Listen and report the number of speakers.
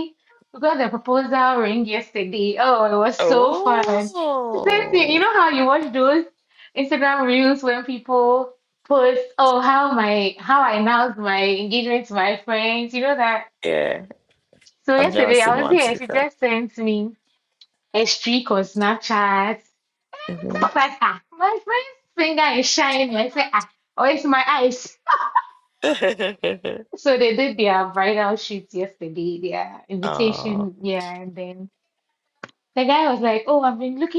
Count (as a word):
two